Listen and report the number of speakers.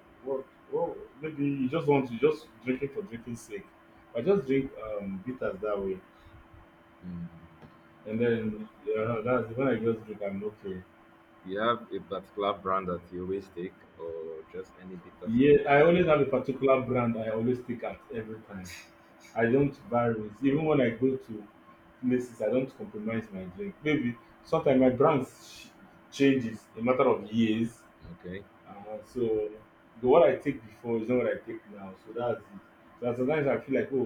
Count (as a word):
two